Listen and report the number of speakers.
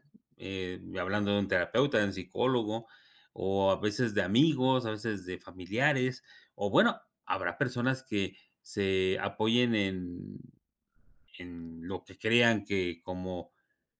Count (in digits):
1